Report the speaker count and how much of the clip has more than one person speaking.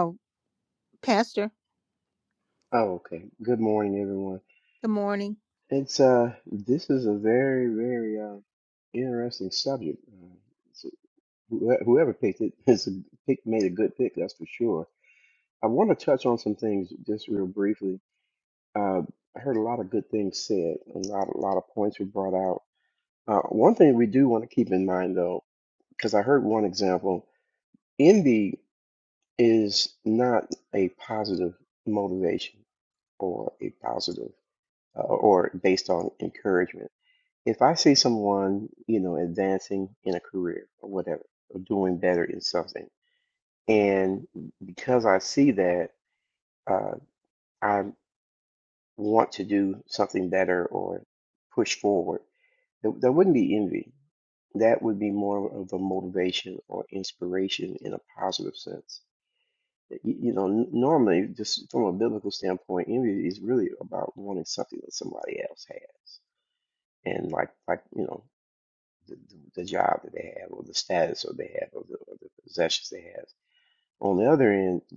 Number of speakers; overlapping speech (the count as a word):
two, no overlap